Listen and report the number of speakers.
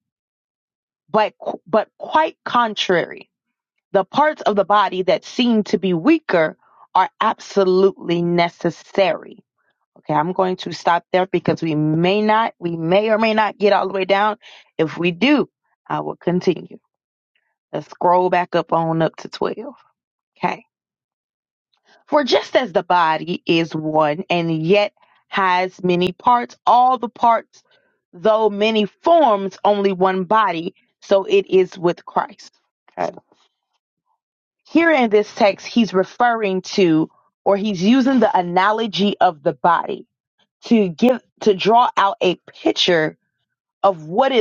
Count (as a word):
one